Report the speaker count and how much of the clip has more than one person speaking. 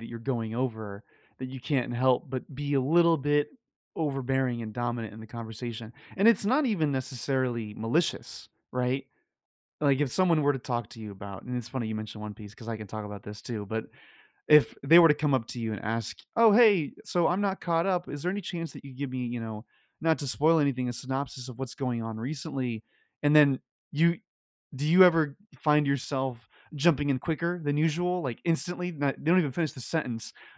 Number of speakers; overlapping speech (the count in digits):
1, no overlap